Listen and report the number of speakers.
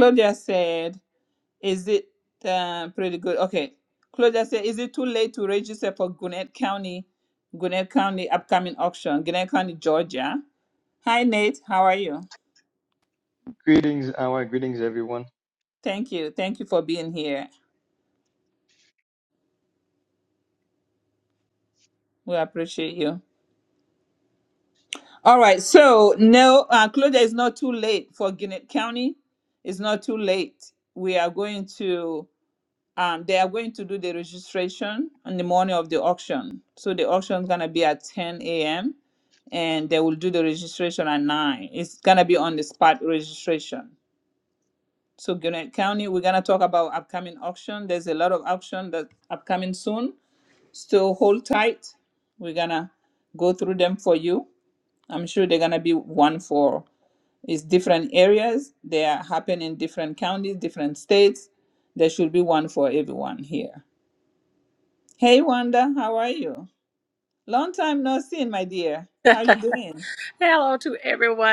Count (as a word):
three